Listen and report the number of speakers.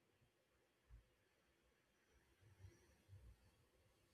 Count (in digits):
0